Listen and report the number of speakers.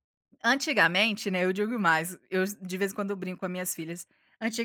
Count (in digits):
1